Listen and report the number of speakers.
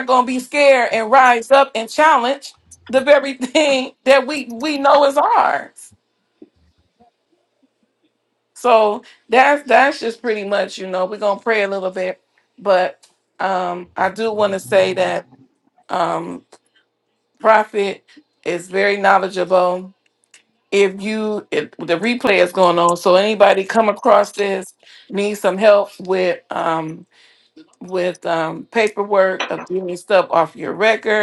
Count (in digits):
1